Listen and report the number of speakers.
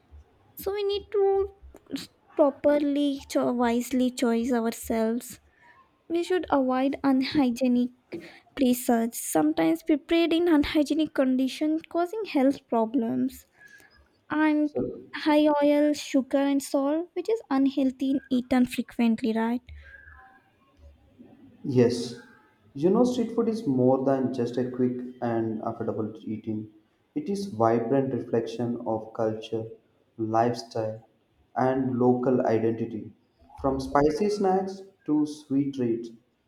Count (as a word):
two